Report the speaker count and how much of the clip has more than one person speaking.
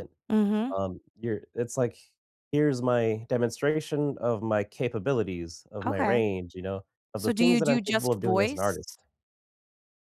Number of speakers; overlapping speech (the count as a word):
two, about 18%